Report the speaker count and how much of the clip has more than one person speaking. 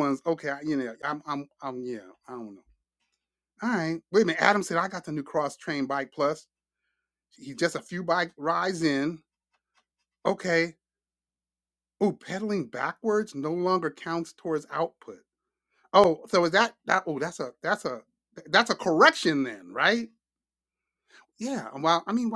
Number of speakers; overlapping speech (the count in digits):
1, no overlap